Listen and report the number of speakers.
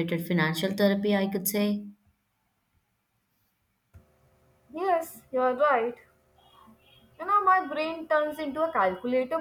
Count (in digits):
2